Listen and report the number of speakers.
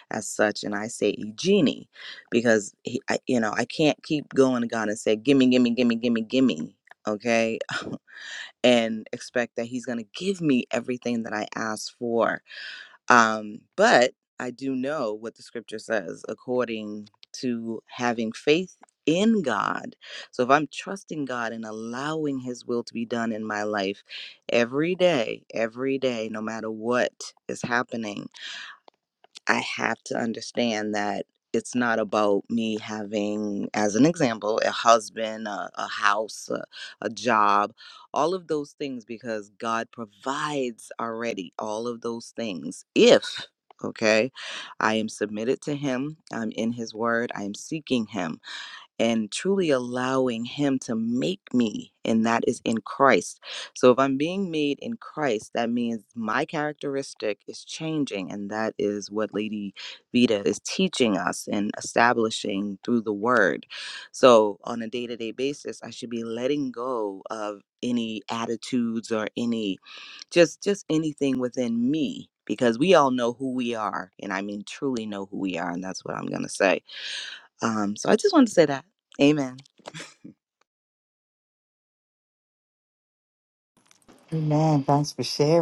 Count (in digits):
2